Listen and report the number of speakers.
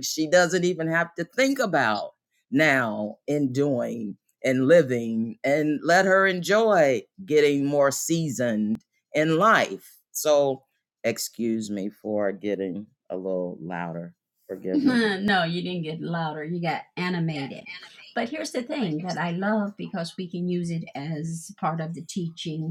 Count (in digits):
2